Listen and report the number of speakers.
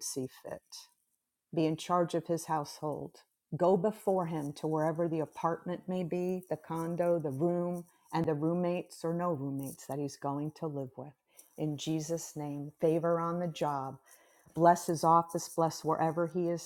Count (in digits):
1